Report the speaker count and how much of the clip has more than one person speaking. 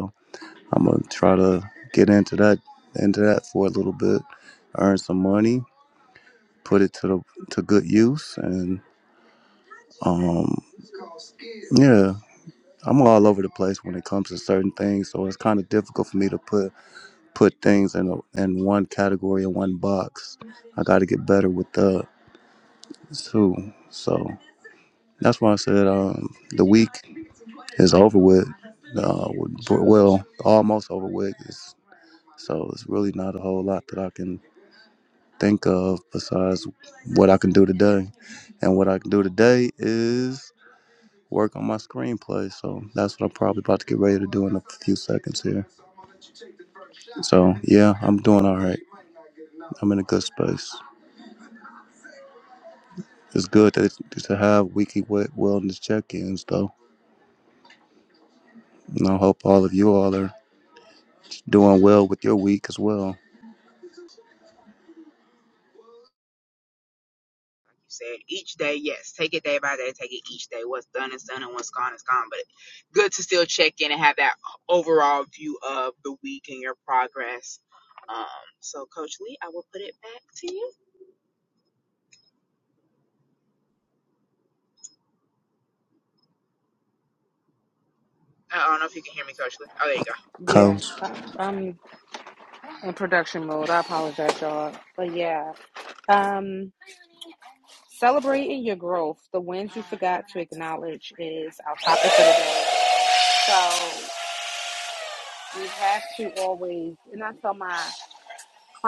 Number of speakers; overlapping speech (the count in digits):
3, under 1%